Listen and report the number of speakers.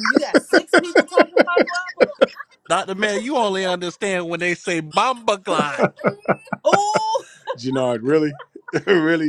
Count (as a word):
three